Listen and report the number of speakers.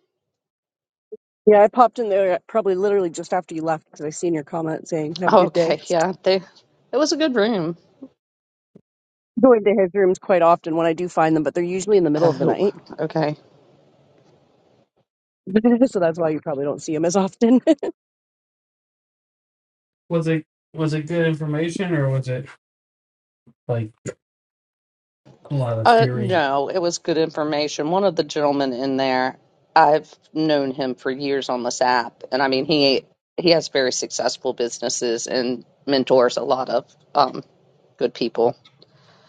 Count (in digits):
3